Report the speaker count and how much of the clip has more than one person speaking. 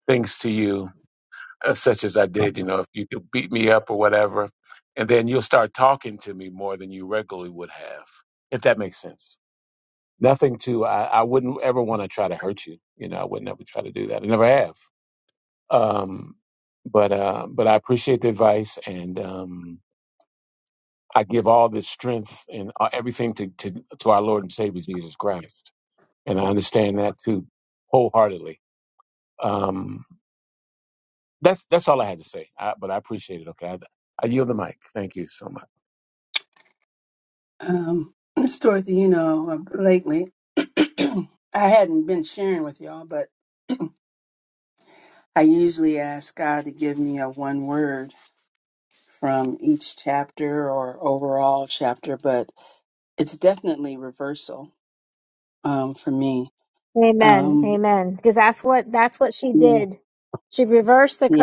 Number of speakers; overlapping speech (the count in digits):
3, about 1%